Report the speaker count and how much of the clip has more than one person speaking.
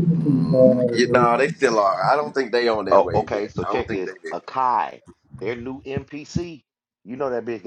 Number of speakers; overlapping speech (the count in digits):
3, about 21%